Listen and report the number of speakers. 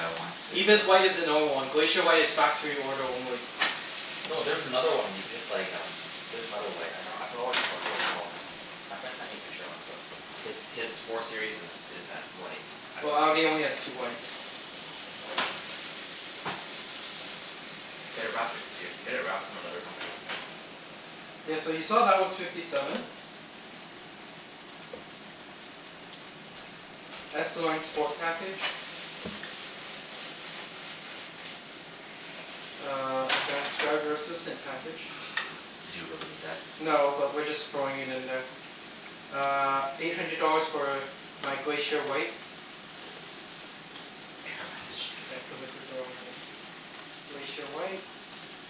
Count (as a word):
two